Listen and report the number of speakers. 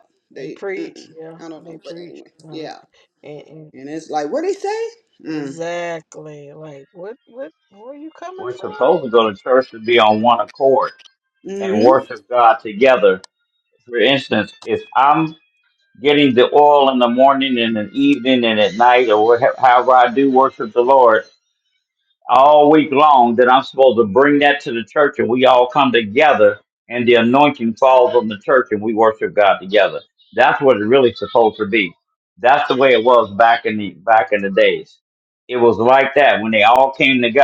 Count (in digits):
3